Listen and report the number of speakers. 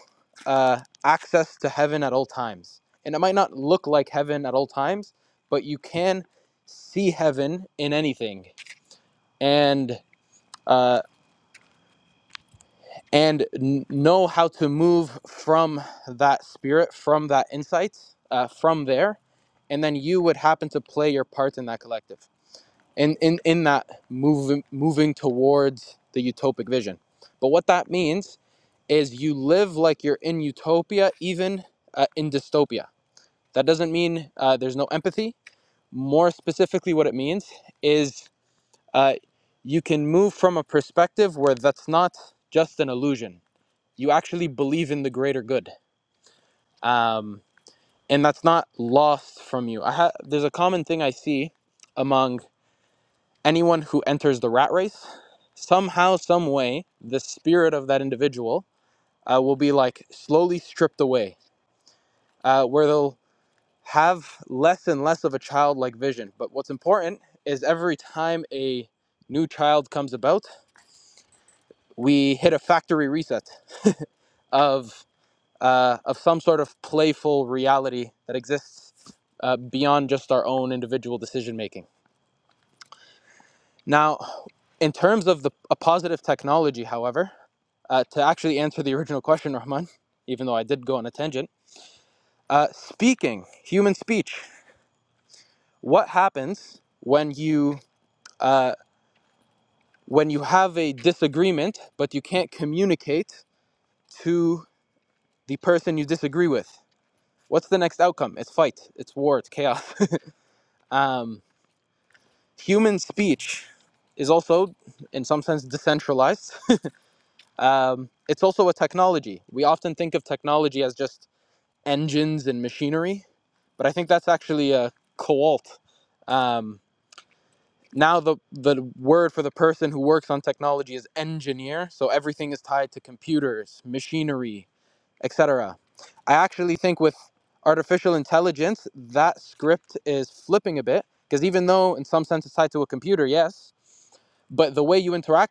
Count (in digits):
1